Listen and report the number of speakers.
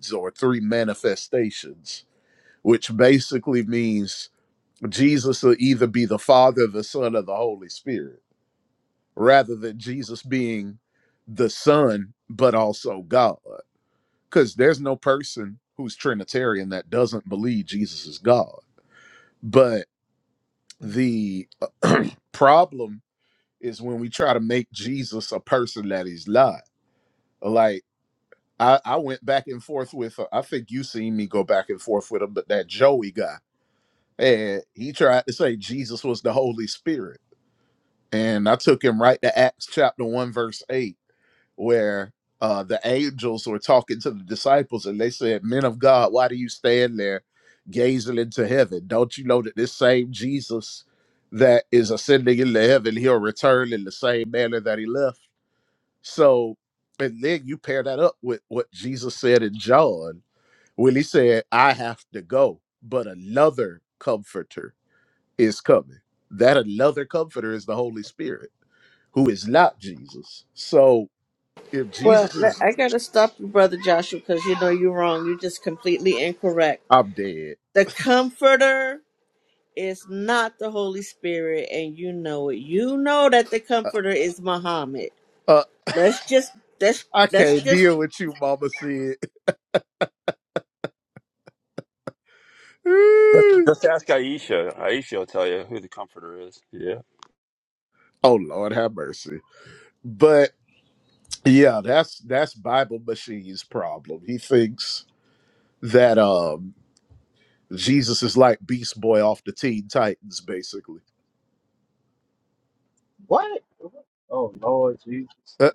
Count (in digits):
4